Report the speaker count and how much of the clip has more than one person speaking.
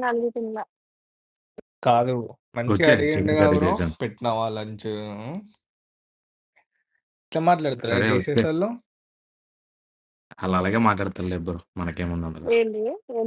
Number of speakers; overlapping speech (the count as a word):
three, about 14%